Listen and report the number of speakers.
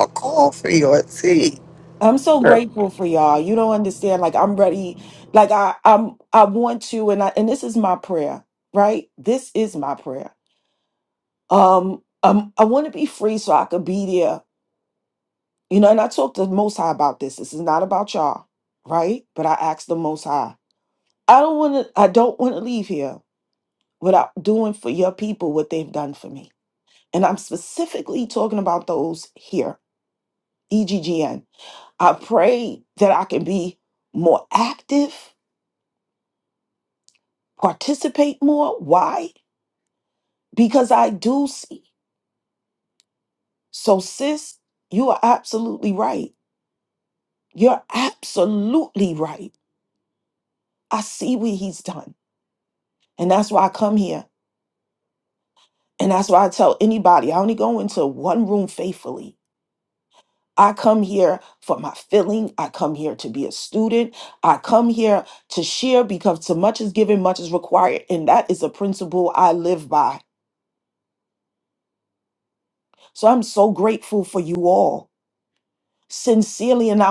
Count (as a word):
two